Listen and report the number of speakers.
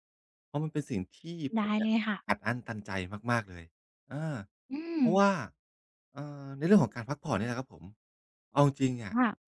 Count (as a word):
two